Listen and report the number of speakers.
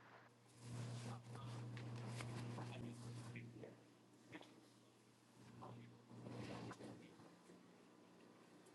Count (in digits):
0